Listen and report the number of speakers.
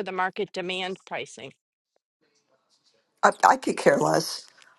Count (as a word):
two